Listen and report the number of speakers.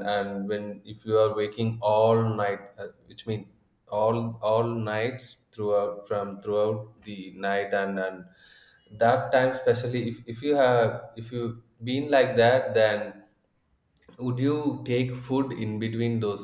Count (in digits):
1